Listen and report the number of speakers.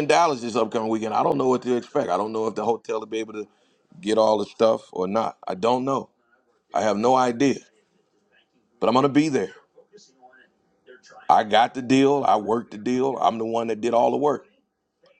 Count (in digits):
1